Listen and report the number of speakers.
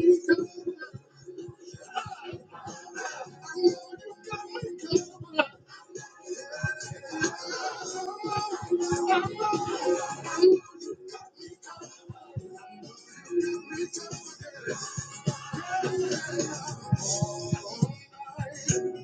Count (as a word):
zero